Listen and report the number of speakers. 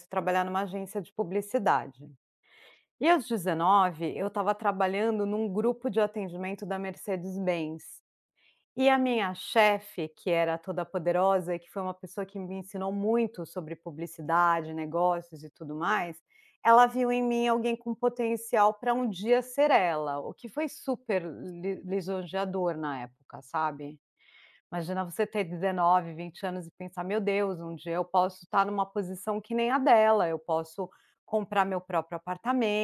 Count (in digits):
1